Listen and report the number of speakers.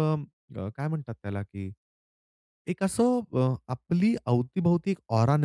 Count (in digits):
1